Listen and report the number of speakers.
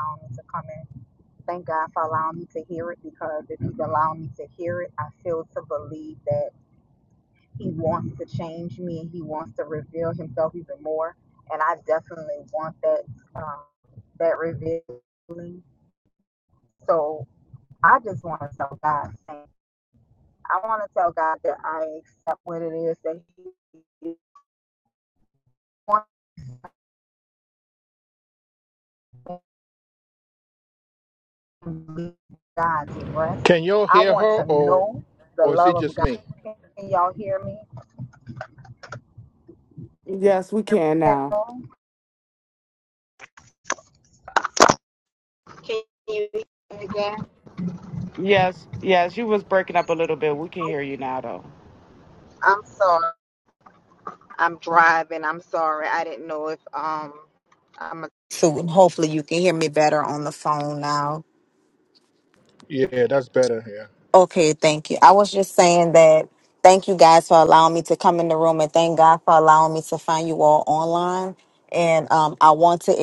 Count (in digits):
3